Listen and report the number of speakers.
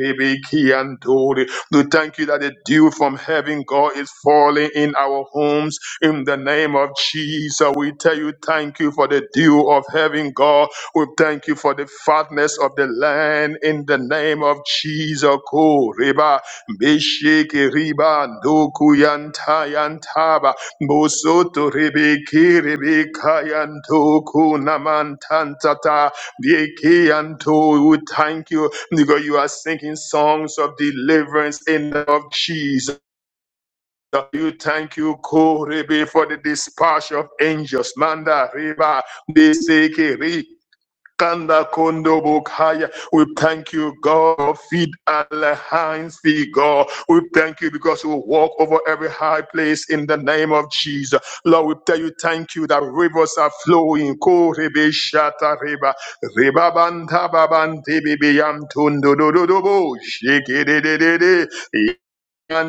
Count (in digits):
1